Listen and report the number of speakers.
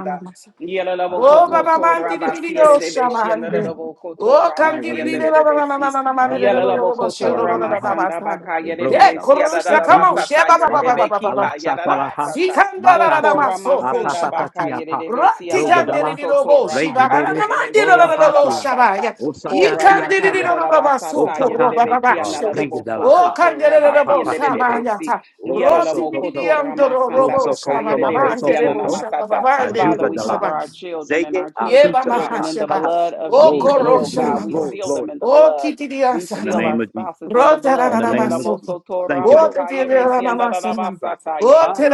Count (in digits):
3